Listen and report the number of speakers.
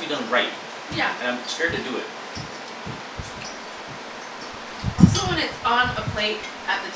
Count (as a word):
two